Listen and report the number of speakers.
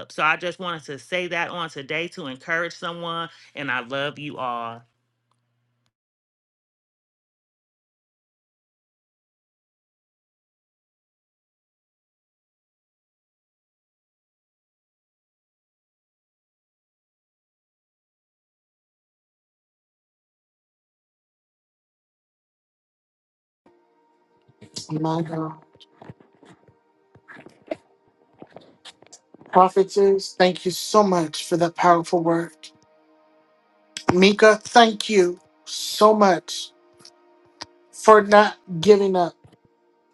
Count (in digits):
2